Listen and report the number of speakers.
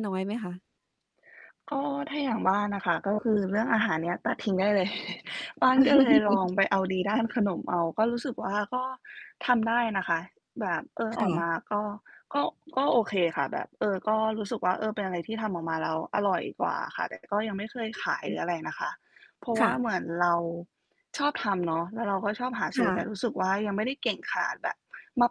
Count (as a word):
two